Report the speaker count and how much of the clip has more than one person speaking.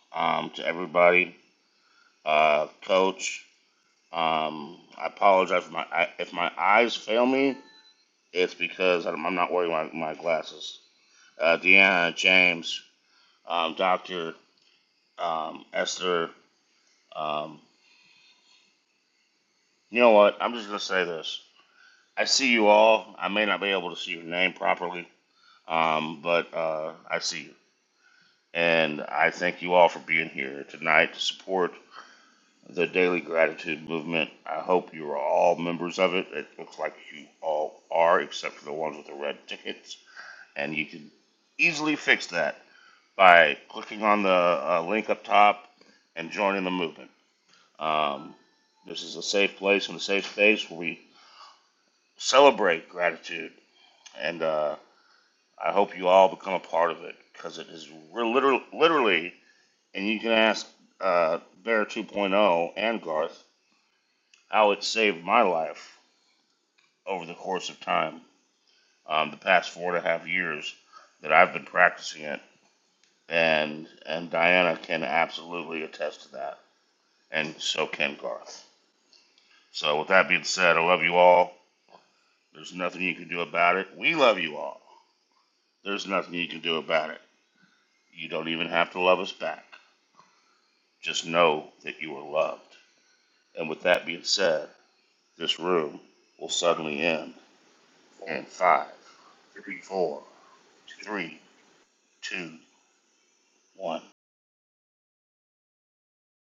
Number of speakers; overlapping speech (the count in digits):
1, no overlap